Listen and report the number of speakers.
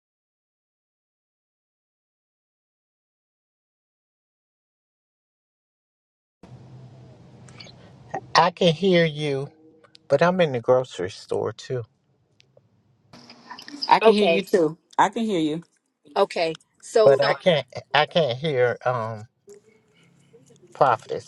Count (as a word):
three